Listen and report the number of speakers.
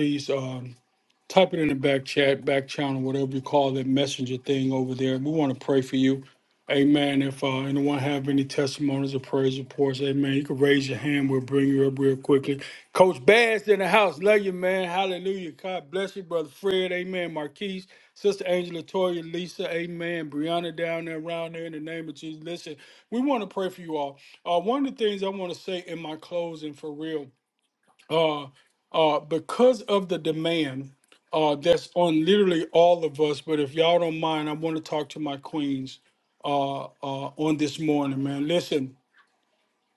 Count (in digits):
1